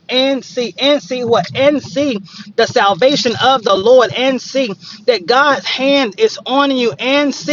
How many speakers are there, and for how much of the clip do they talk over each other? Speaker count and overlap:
1, no overlap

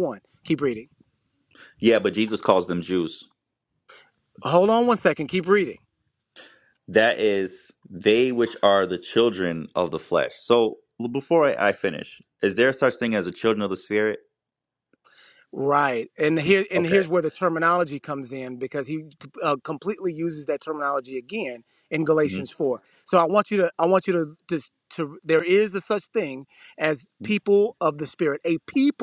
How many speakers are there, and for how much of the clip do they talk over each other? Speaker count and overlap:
2, about 2%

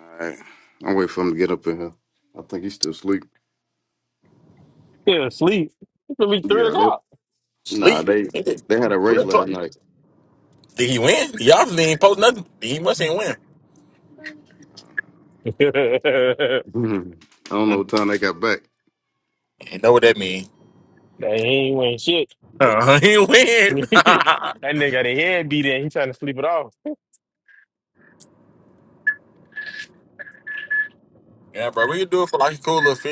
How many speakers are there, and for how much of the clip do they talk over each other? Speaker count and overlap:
3, about 5%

